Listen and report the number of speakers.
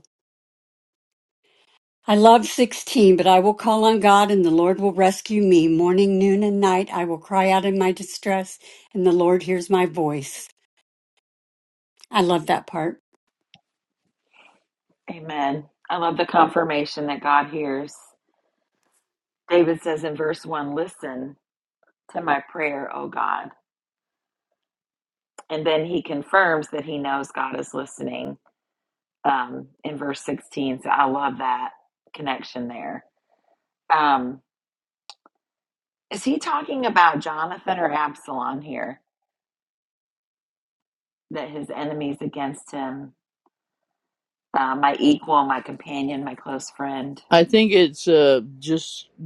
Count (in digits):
3